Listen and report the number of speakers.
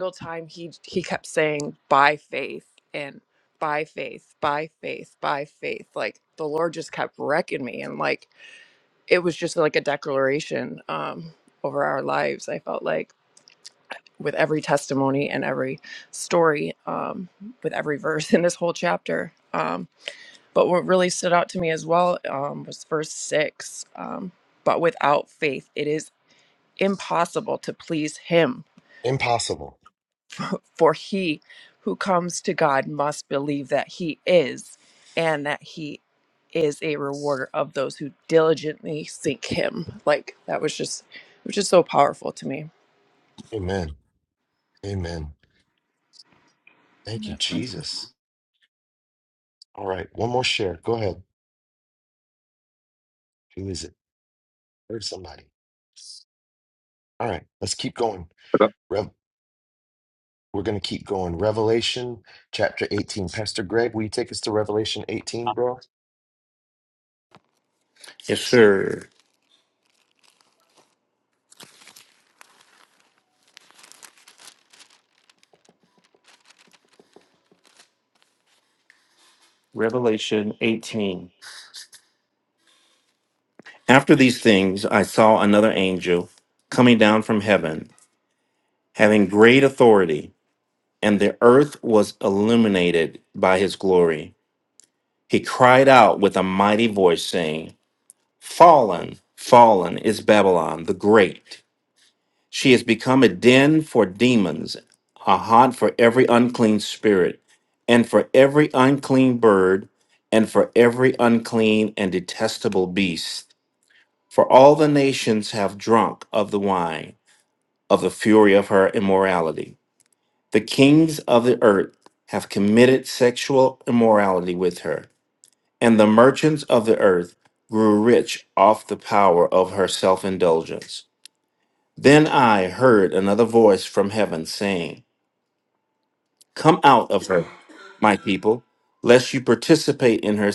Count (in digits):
3